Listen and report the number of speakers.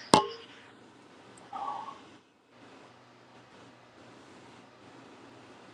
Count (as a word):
zero